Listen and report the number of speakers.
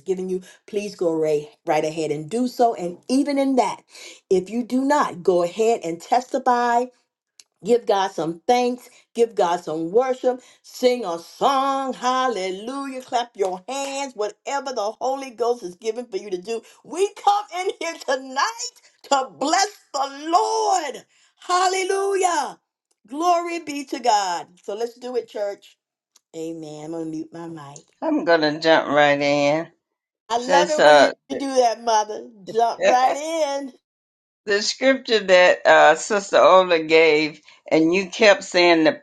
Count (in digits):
2